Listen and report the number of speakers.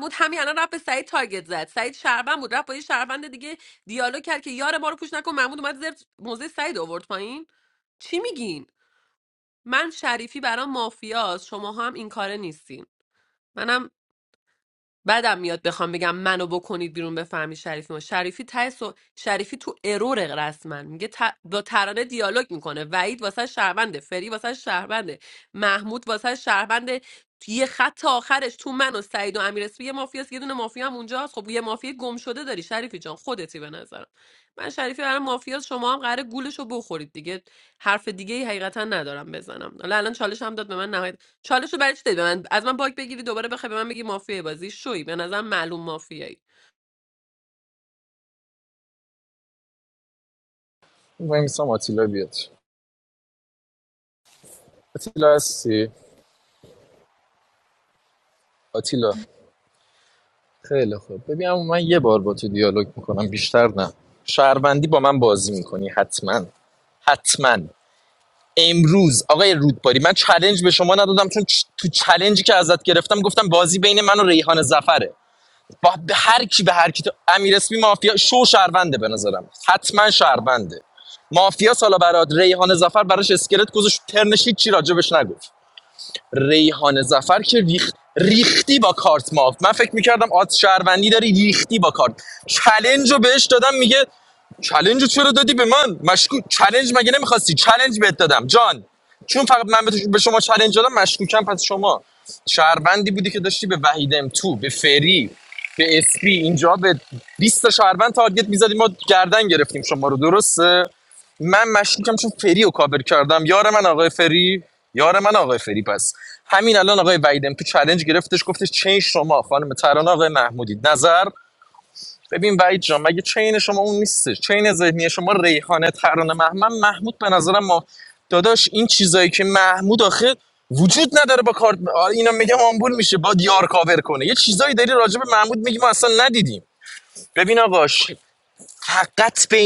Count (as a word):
two